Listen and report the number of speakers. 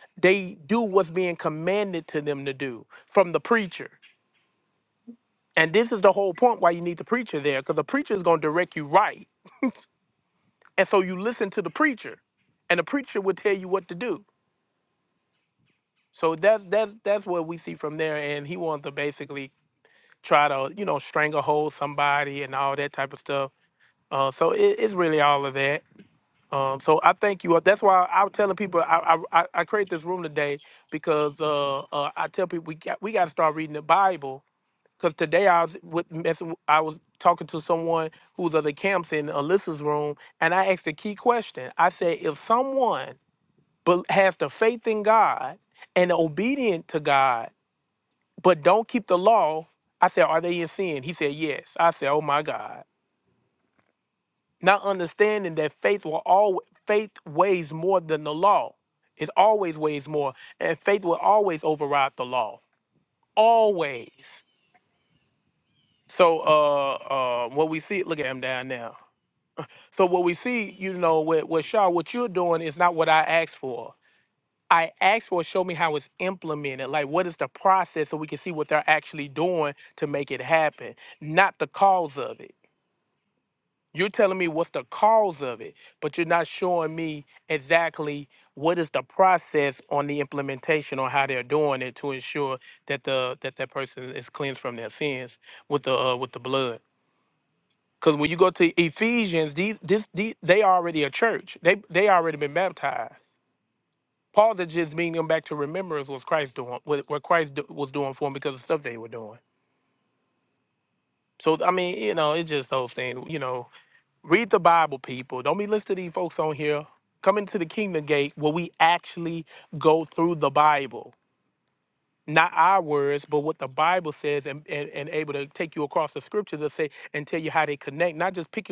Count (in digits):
1